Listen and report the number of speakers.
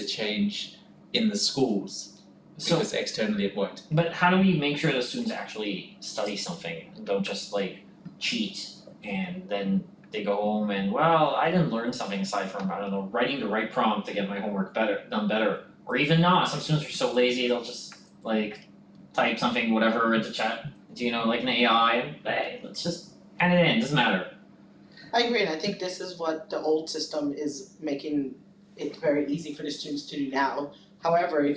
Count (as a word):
three